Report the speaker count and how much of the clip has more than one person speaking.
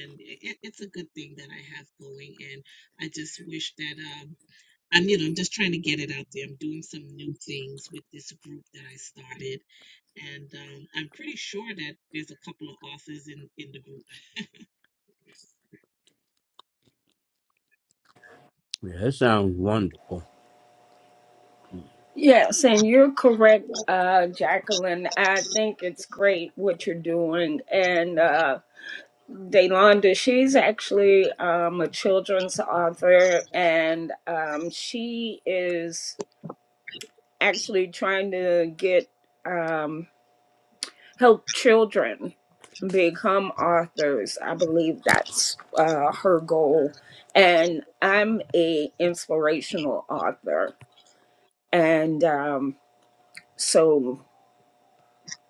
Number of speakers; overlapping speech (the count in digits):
3, no overlap